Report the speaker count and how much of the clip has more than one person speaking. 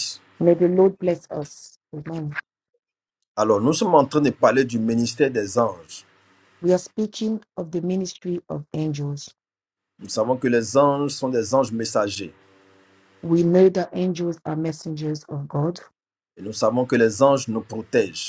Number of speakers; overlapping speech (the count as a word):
two, no overlap